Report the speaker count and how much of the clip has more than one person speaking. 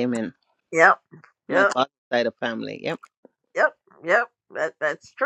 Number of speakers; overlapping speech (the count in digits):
2, about 4%